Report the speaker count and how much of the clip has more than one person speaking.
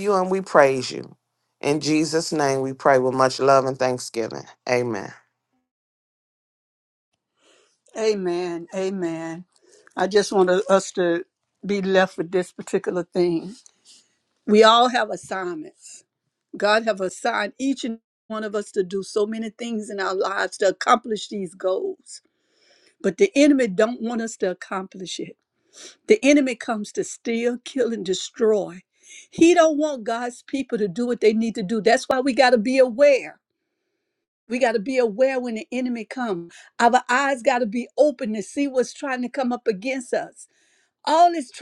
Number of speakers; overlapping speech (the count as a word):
two, no overlap